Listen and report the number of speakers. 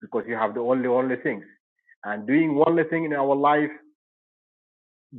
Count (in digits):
1